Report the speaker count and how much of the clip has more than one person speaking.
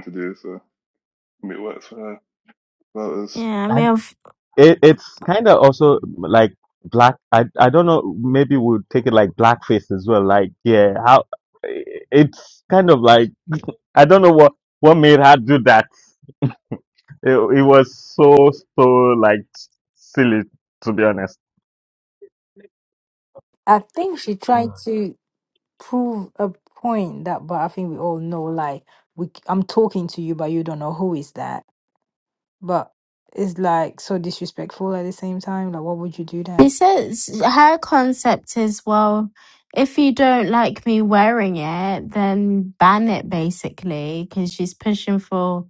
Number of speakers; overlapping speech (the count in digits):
4, about 1%